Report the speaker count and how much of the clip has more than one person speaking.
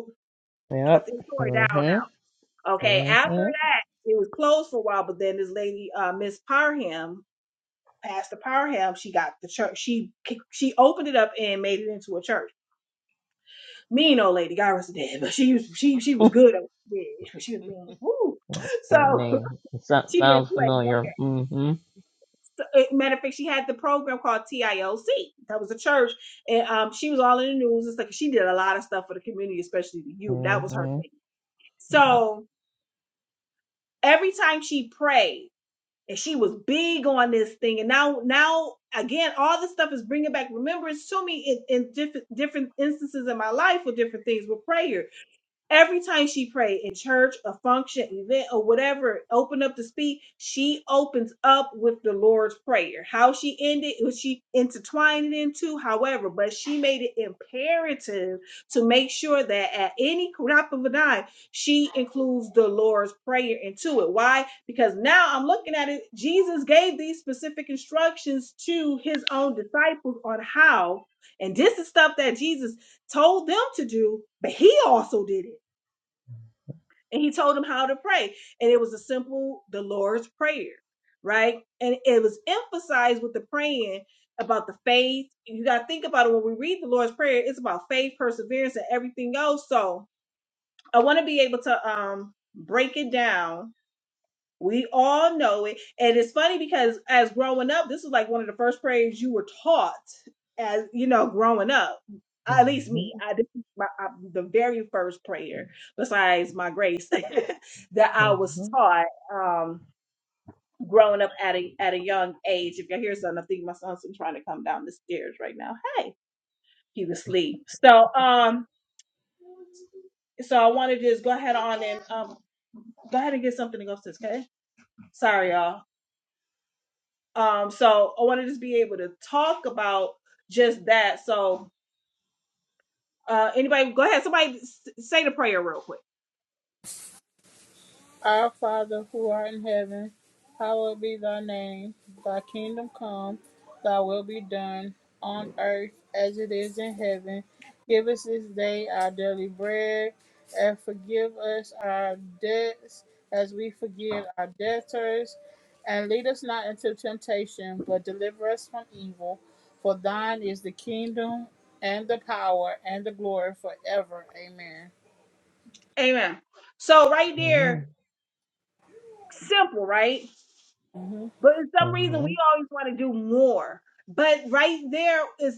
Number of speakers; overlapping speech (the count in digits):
3, about 2%